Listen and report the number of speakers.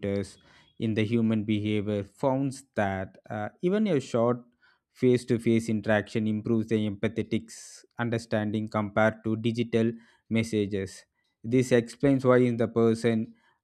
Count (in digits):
1